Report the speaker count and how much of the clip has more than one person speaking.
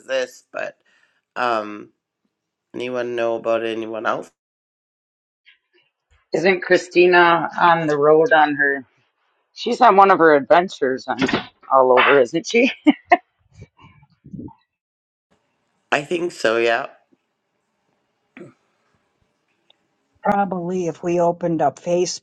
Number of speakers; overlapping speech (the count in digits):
3, no overlap